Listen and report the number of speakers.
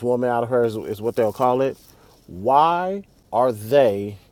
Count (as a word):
one